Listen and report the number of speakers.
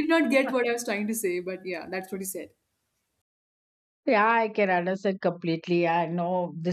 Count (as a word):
two